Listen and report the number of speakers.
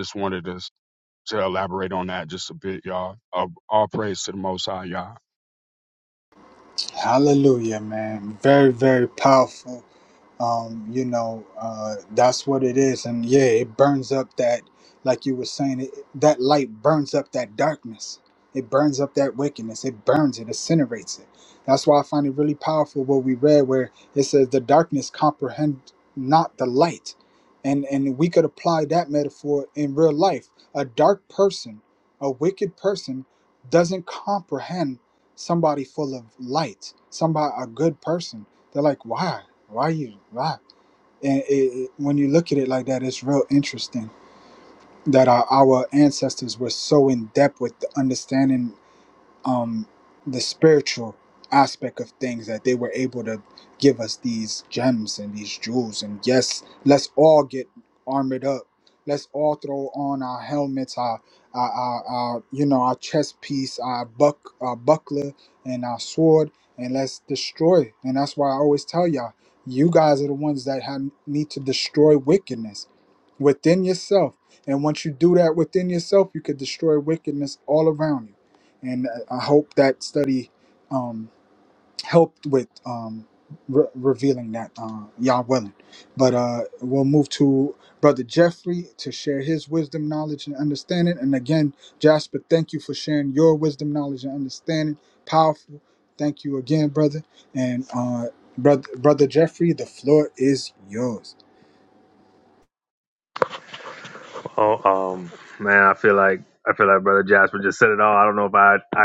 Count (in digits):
3